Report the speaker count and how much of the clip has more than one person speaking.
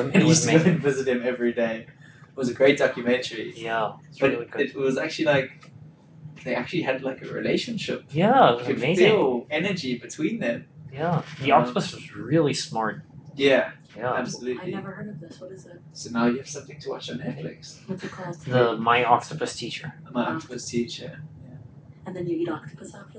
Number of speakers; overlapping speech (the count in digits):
3, about 23%